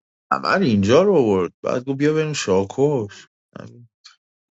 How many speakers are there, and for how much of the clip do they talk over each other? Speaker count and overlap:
one, no overlap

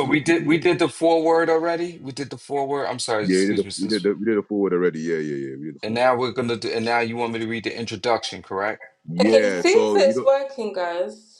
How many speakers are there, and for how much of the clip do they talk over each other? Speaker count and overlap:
three, about 23%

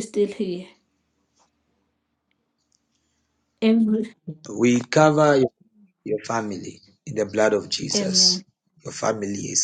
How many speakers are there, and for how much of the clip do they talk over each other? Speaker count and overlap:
two, about 4%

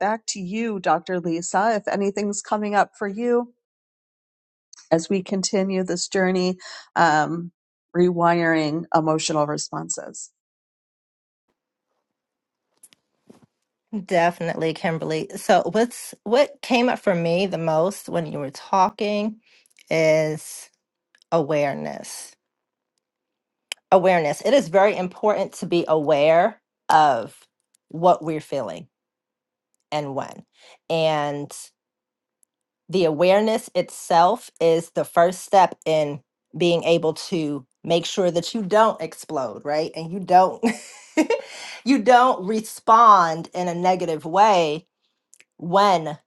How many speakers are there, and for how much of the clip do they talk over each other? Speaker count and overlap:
two, no overlap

